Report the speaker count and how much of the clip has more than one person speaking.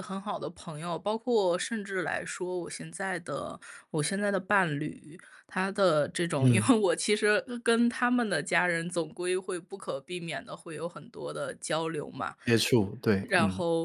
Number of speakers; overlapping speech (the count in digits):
2, about 5%